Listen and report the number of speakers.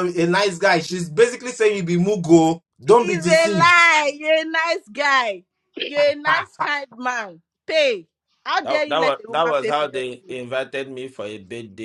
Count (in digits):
3